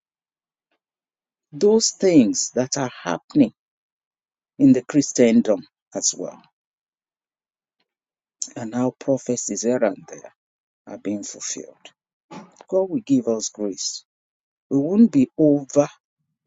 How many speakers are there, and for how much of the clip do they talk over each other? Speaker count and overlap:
1, no overlap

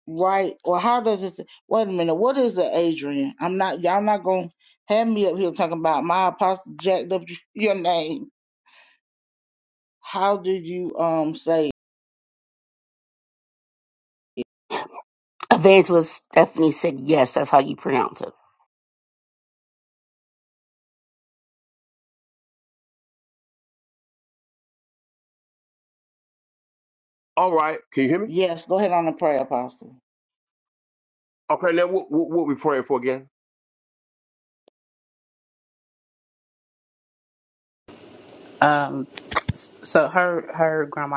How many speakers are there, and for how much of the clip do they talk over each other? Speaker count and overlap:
4, under 1%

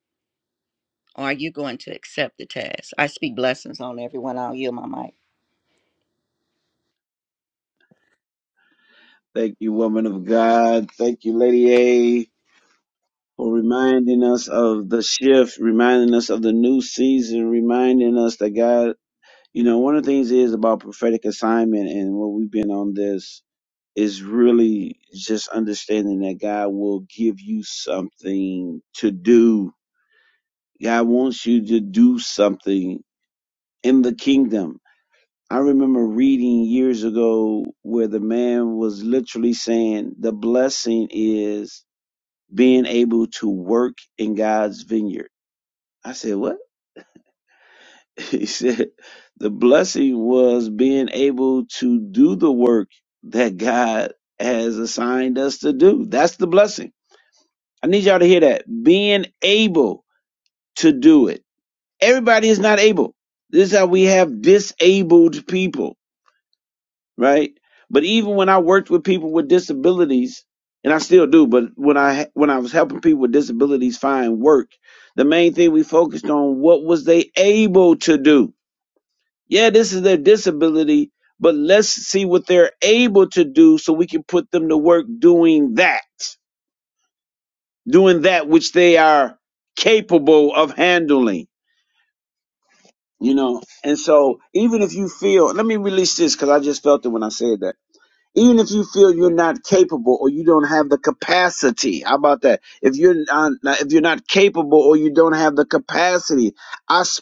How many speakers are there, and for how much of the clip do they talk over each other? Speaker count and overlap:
2, no overlap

